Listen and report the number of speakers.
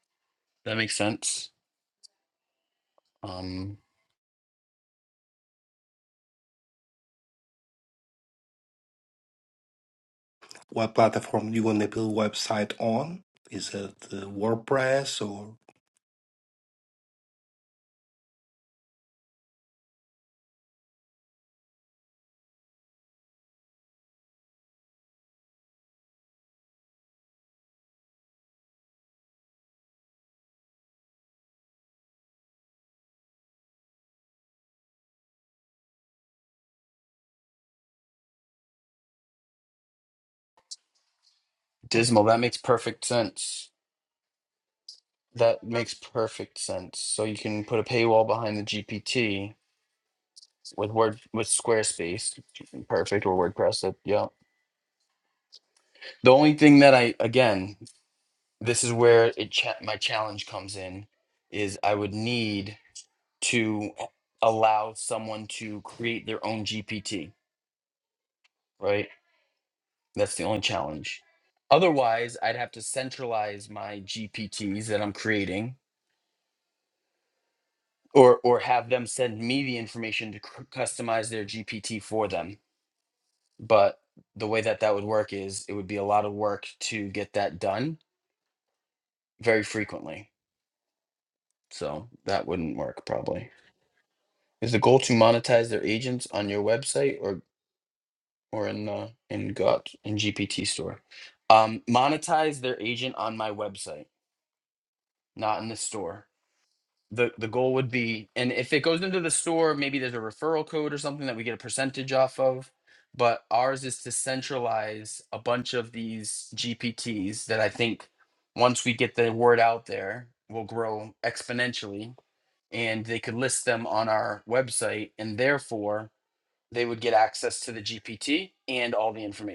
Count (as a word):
two